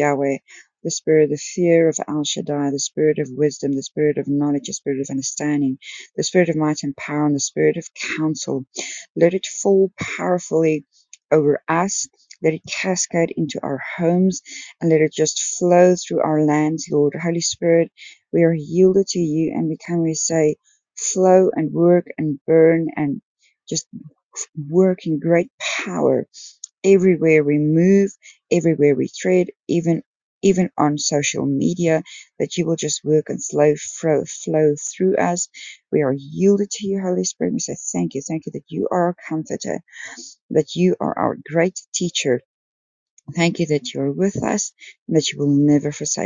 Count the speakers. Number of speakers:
1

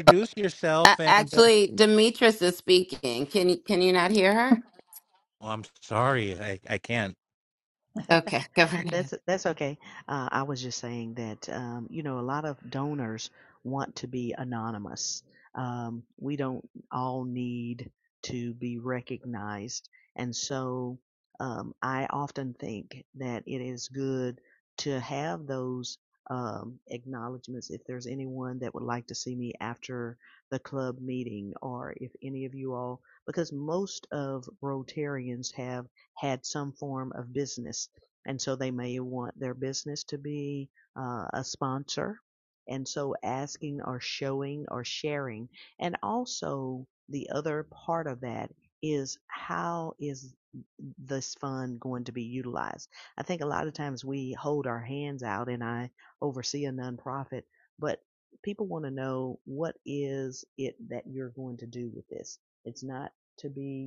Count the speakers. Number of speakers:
3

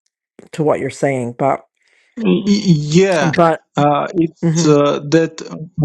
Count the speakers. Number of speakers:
2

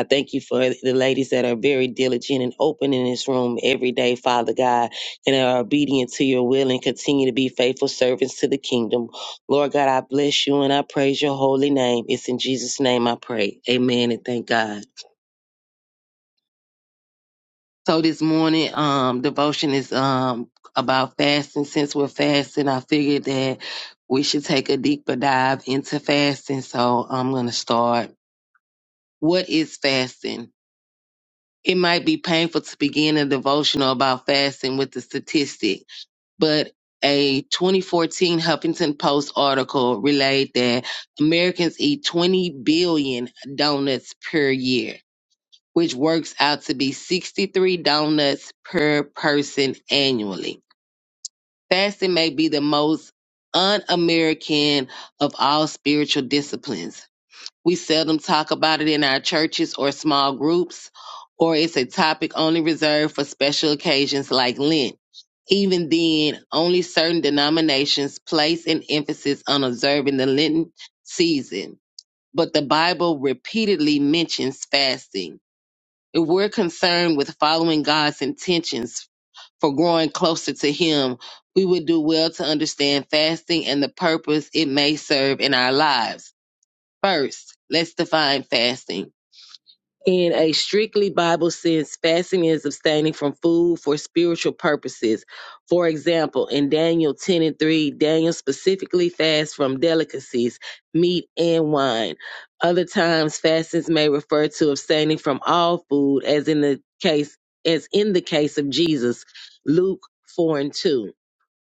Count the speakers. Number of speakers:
1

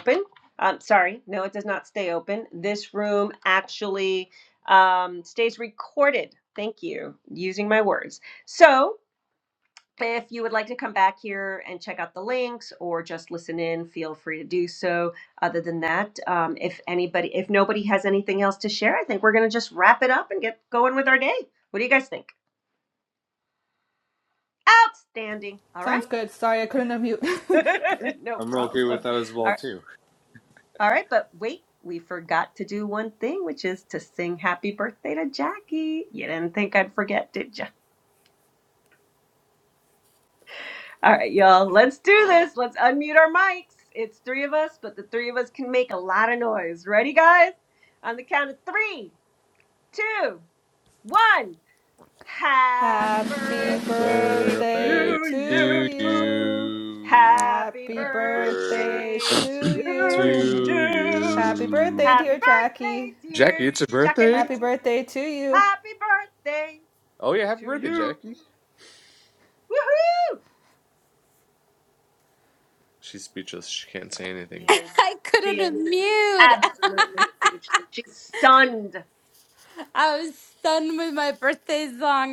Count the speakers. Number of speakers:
4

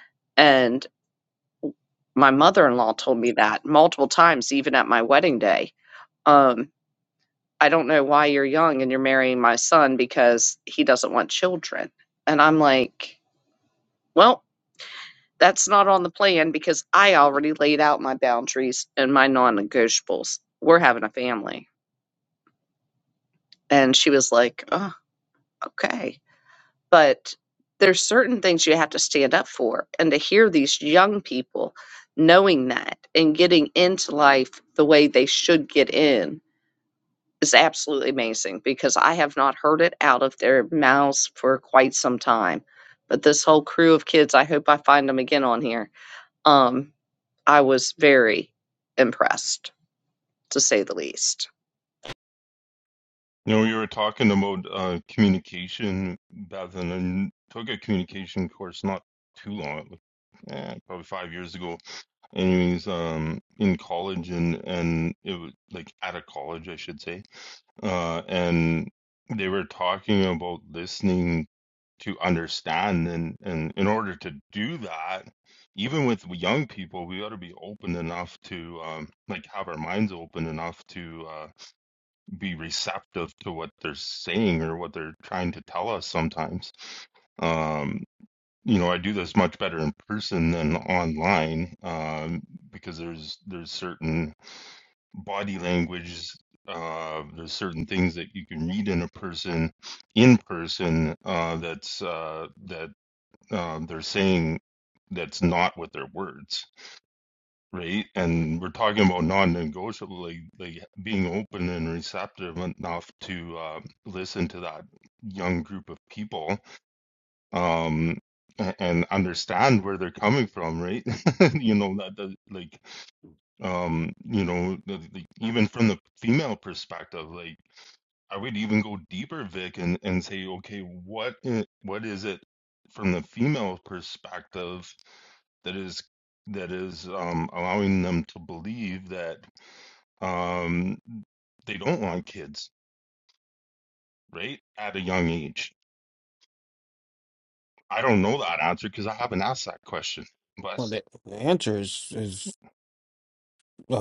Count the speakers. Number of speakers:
3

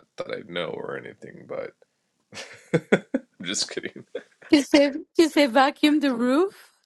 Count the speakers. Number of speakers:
2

